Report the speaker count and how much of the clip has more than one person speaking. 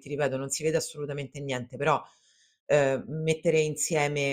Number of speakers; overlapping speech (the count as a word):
one, no overlap